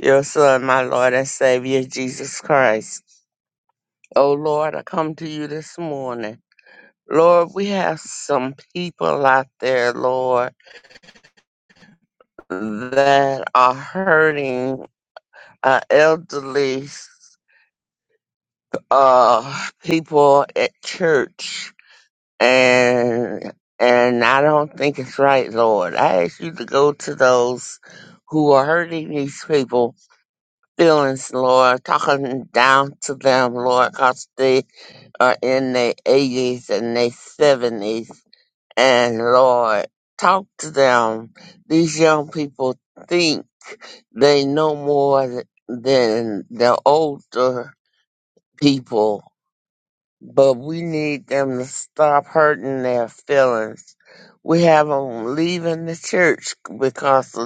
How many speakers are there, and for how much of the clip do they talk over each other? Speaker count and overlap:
one, no overlap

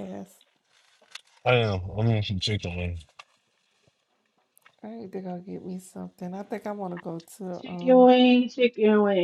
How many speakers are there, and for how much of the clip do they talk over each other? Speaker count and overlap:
three, about 5%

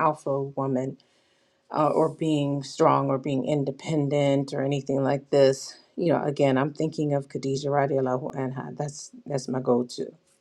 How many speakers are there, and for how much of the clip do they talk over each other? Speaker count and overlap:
one, no overlap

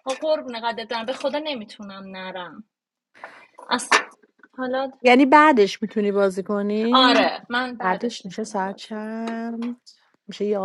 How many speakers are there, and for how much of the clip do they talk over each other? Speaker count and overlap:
two, about 13%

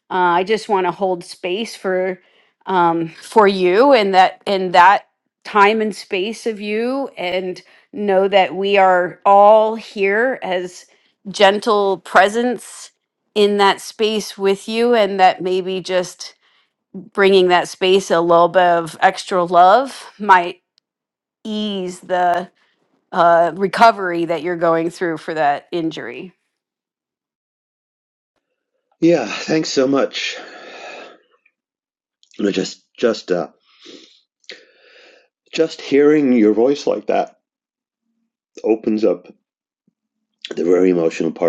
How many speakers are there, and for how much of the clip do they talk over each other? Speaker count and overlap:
two, no overlap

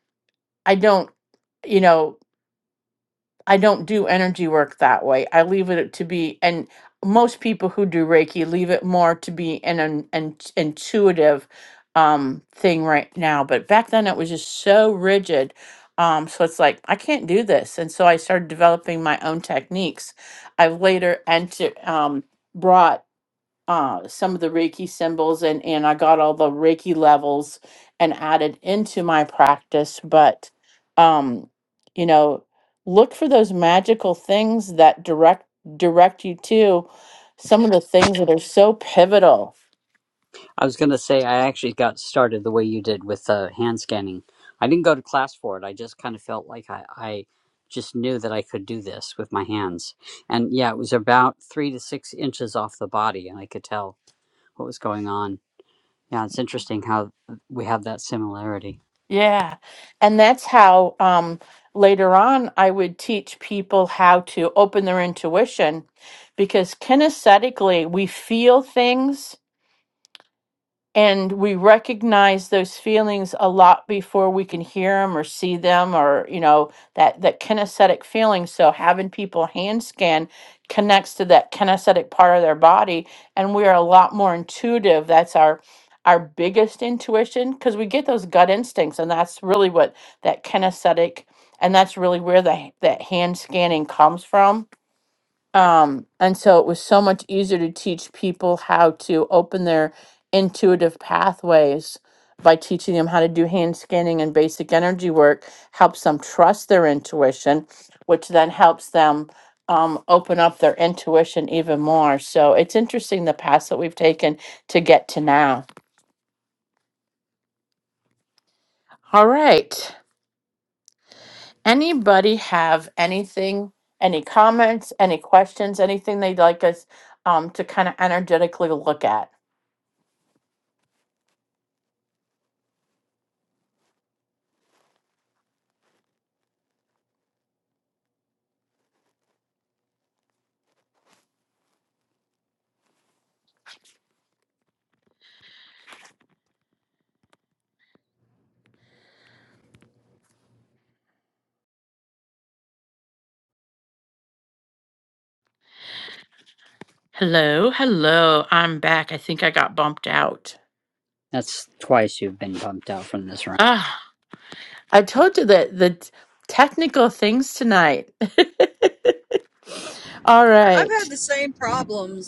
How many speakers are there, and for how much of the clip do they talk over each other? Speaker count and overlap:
three, under 1%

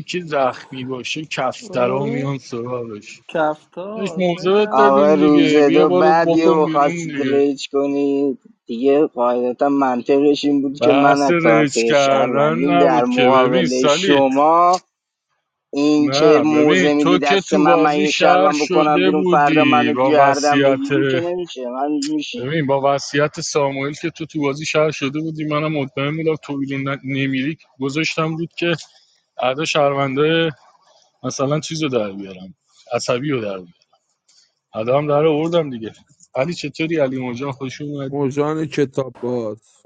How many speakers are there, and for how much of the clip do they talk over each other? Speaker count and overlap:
four, about 32%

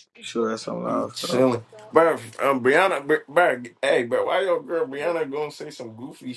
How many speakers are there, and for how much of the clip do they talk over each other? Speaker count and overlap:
two, about 9%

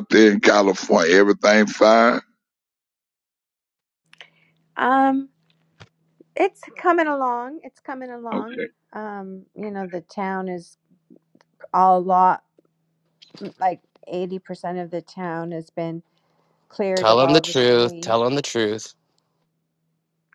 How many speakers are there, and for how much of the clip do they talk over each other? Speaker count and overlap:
three, about 7%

